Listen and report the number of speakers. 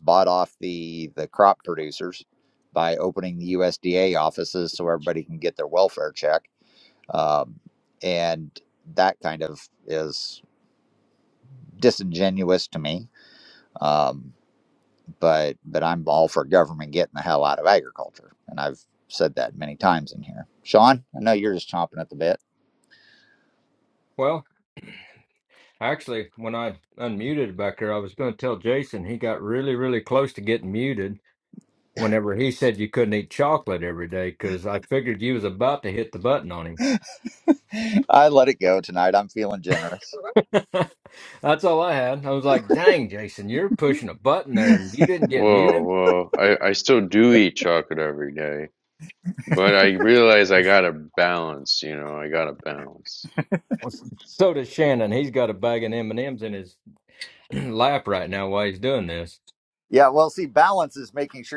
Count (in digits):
3